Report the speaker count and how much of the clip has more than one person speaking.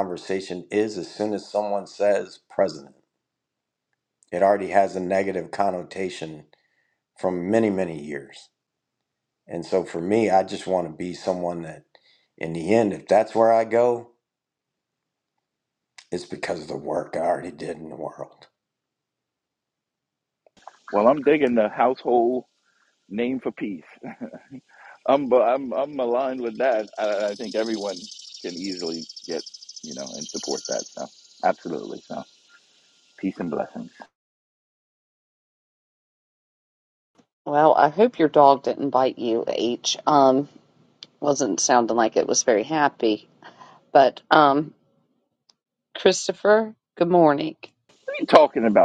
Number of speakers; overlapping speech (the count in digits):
3, no overlap